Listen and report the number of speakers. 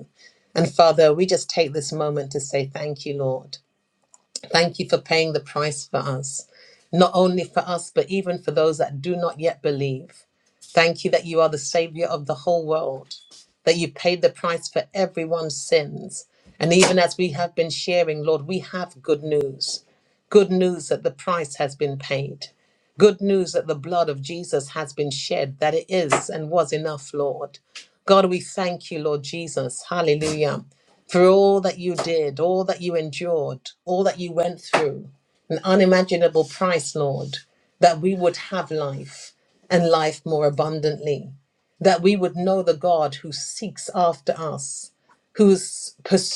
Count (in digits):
1